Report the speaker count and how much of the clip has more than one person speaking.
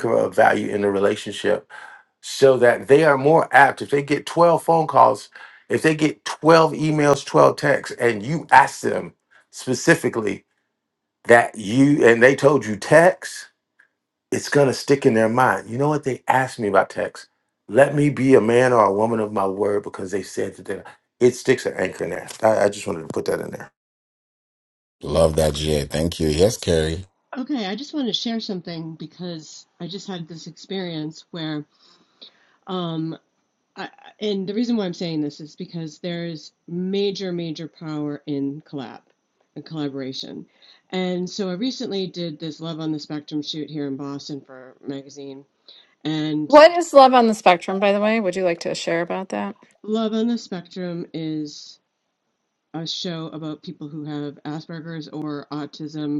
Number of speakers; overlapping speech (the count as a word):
four, under 1%